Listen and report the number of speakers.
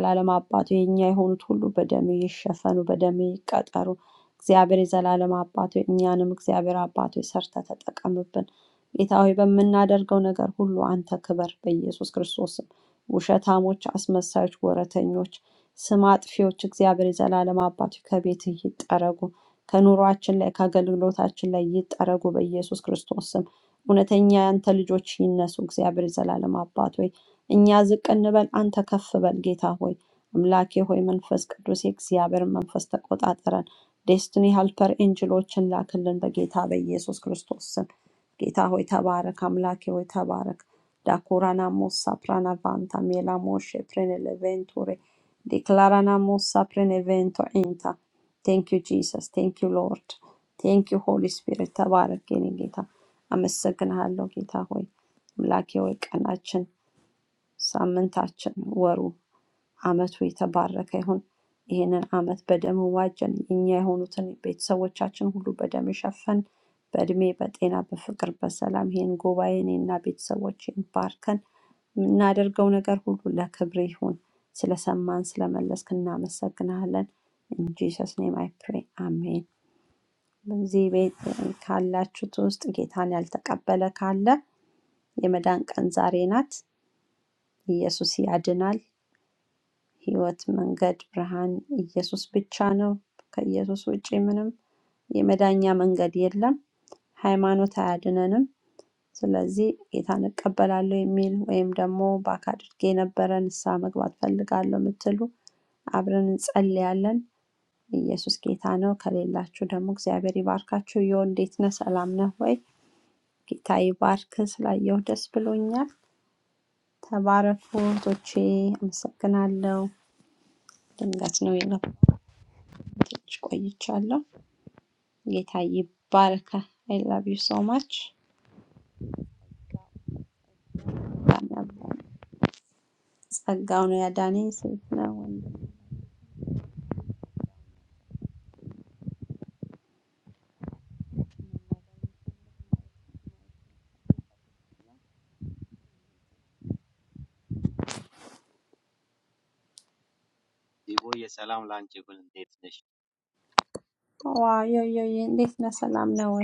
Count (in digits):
2